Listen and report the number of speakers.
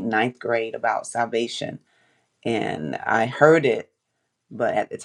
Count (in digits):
1